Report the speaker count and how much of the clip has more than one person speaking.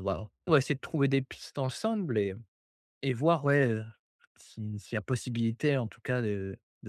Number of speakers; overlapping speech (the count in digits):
1, no overlap